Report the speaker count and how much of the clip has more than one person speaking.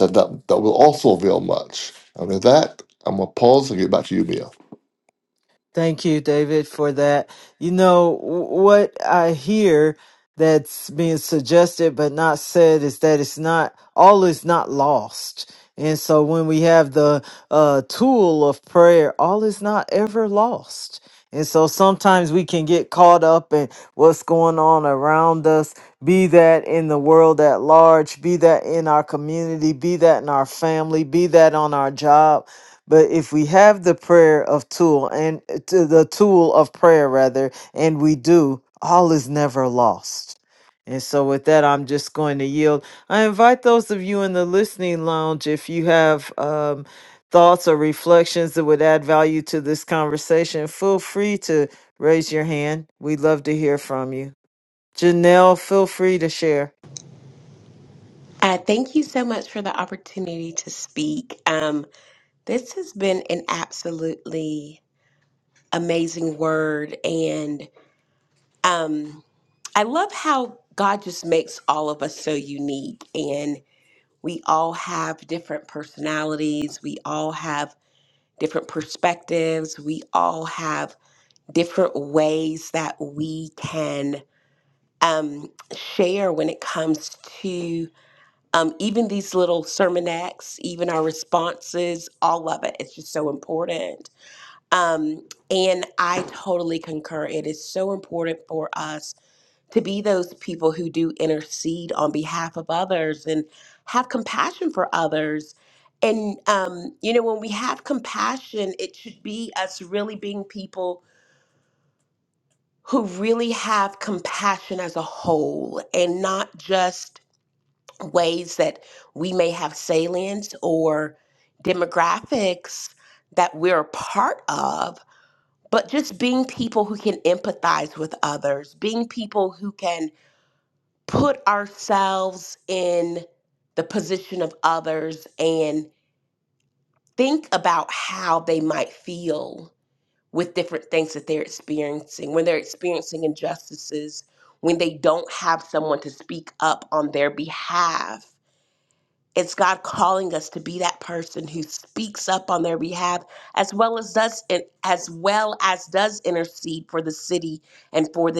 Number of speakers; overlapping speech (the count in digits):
3, no overlap